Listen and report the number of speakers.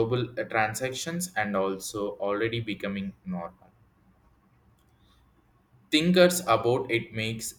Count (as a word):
one